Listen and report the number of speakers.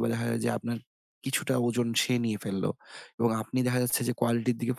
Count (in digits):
1